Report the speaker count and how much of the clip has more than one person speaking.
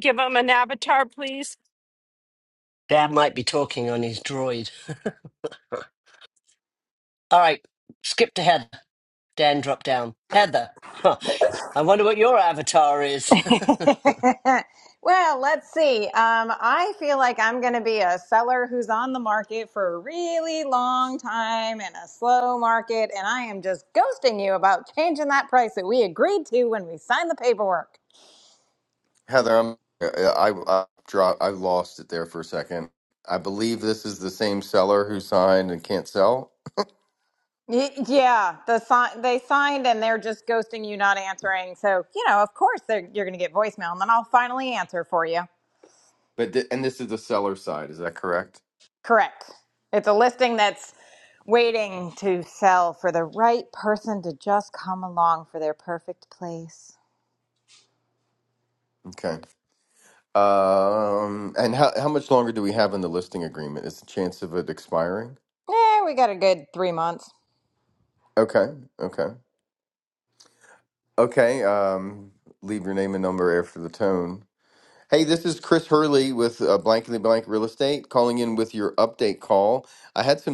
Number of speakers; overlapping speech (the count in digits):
4, no overlap